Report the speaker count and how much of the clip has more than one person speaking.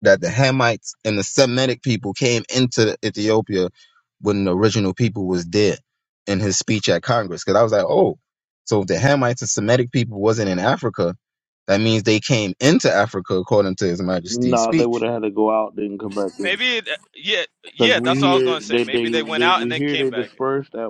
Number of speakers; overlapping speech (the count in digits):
3, about 16%